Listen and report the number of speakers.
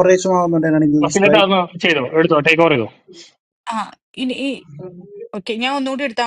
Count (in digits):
3